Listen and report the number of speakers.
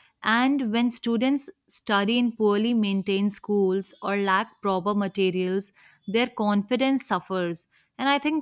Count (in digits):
1